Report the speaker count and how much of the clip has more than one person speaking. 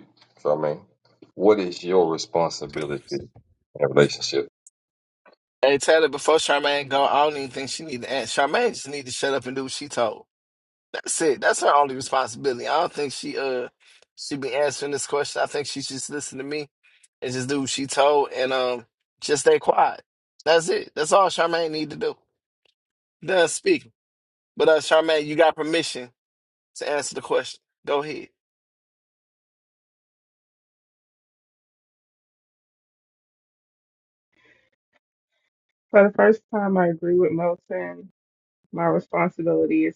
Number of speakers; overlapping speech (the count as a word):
three, no overlap